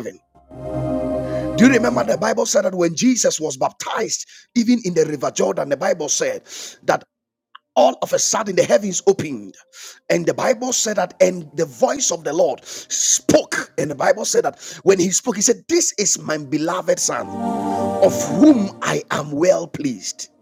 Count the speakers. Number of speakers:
1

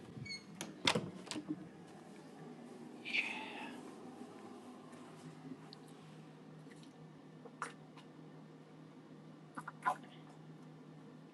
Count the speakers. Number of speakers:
0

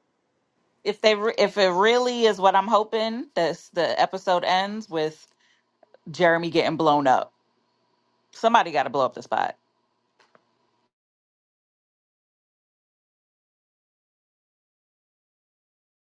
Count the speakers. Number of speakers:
1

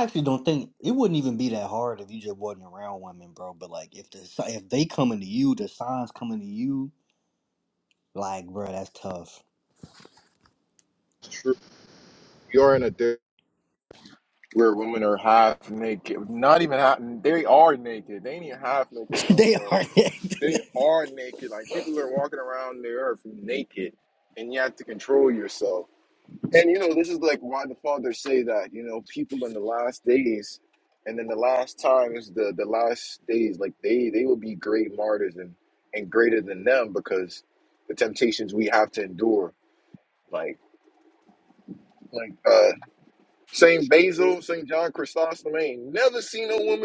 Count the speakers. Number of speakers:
2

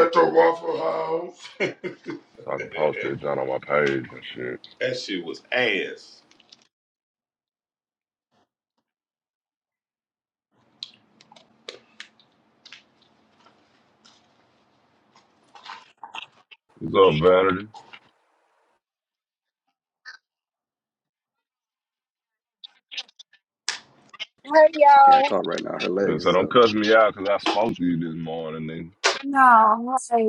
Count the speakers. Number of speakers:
4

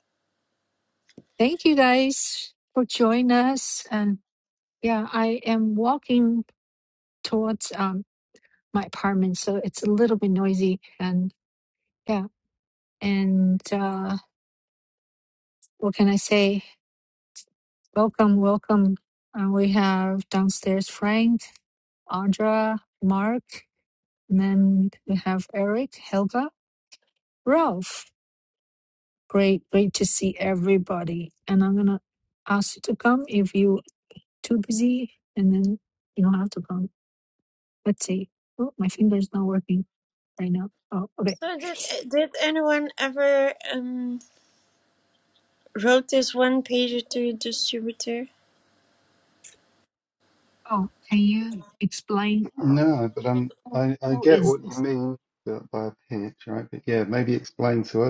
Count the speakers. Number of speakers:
3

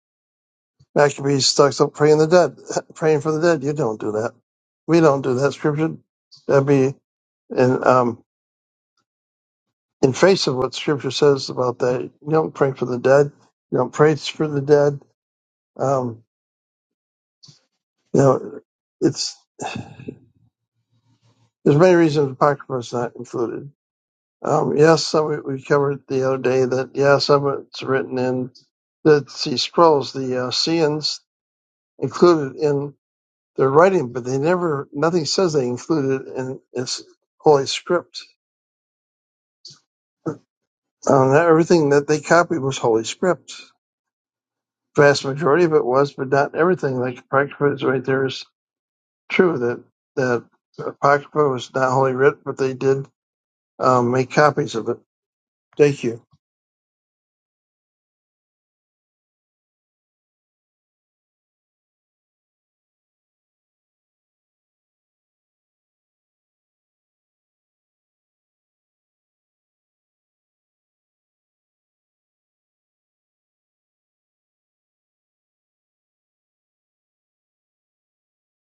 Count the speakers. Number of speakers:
1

